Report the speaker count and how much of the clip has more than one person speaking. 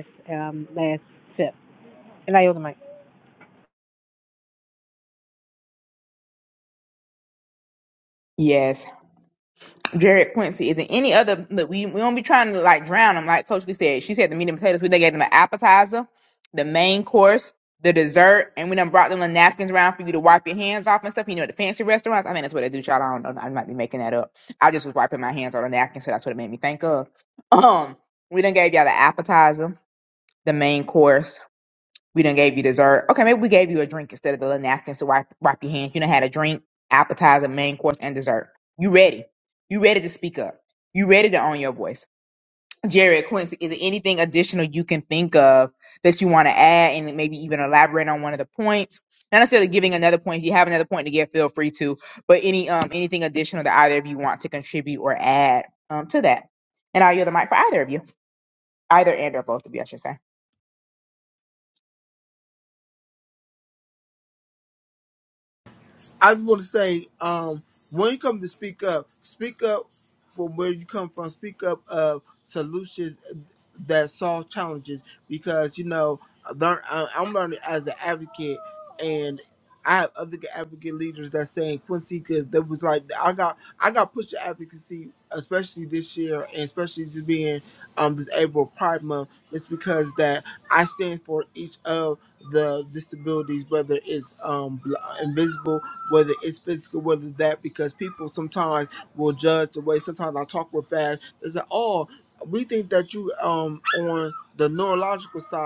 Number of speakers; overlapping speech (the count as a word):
three, no overlap